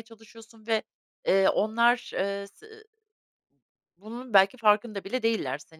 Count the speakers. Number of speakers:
one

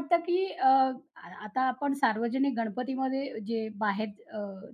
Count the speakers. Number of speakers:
one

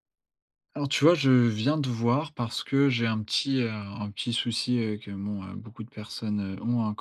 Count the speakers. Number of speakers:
one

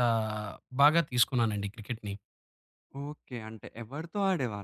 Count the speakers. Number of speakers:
two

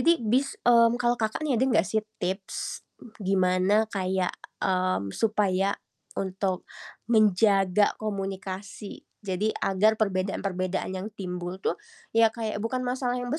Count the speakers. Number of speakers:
one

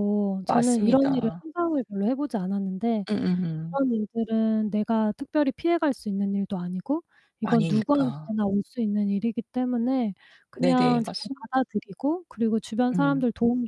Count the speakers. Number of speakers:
two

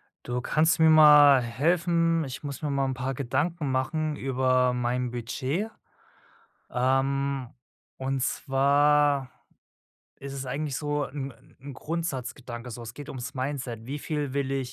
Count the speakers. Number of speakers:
one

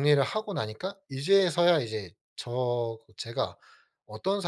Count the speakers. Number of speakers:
one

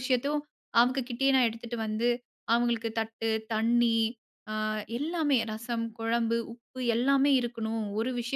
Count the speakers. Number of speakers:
one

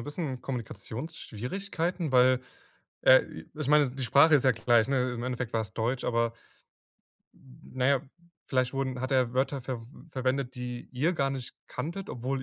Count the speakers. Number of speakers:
one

